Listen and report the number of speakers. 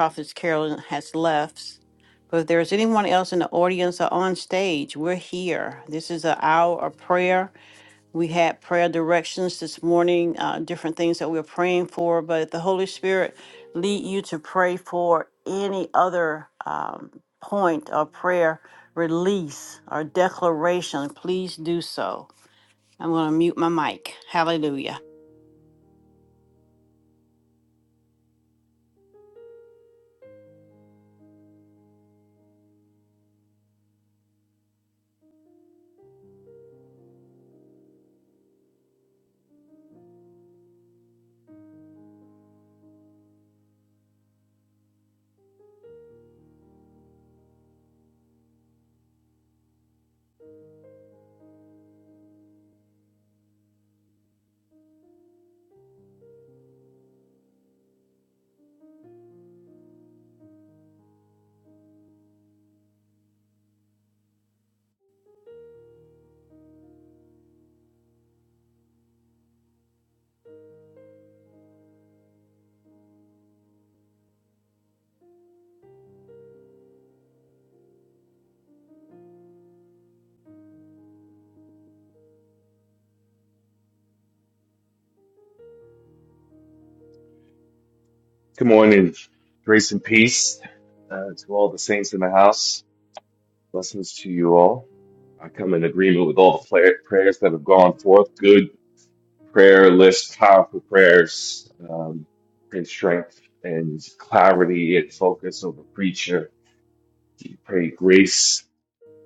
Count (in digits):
2